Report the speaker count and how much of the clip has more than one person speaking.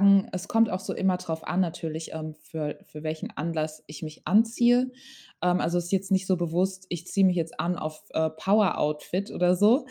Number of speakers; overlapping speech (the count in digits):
1, no overlap